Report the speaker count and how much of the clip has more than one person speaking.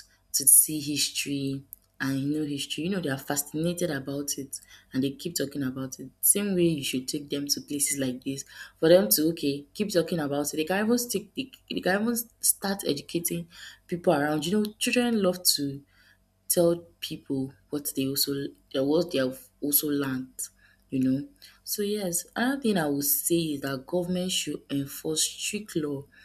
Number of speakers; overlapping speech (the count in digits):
1, no overlap